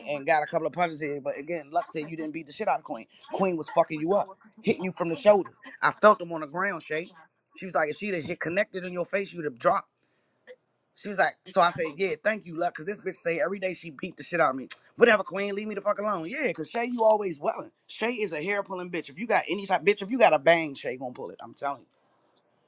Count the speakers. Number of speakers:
one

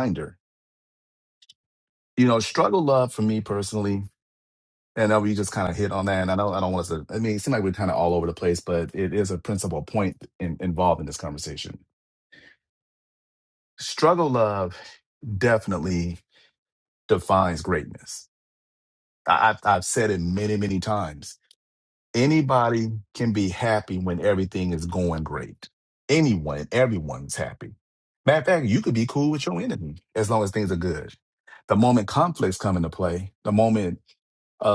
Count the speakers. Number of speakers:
one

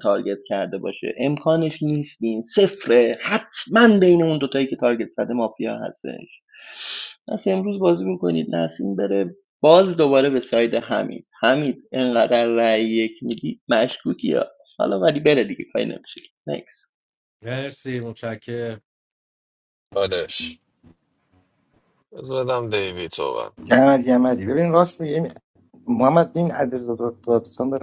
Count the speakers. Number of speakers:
four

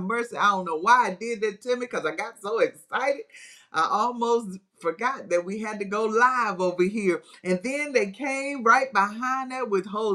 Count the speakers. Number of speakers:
one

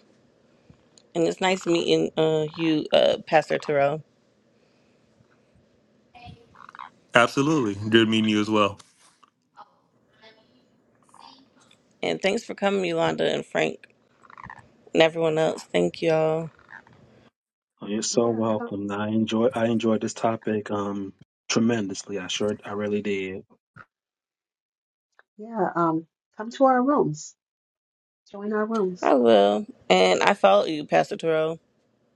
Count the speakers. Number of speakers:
four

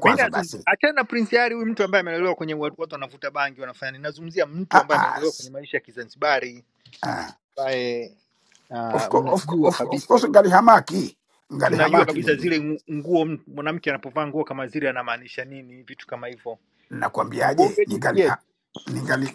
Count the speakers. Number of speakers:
two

